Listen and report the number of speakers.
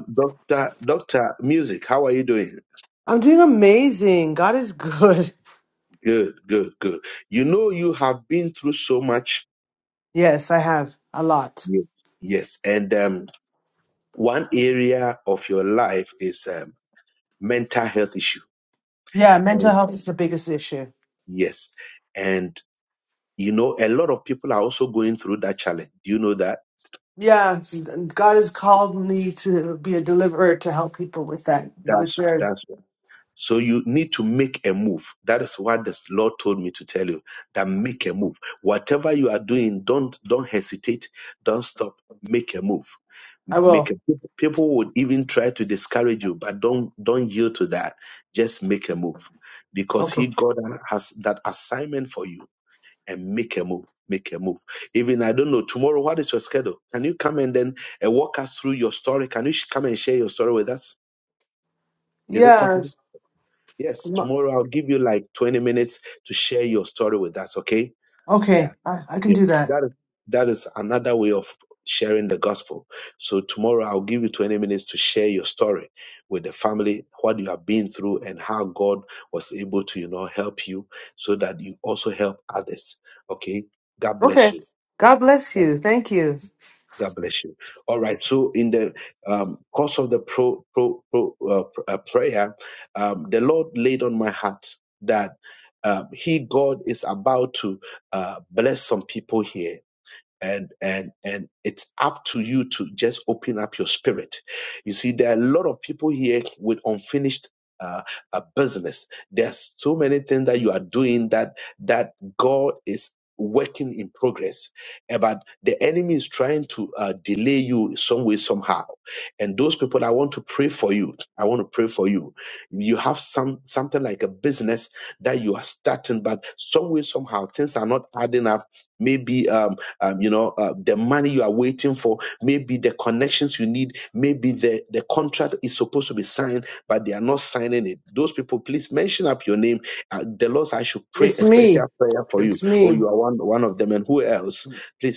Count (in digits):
2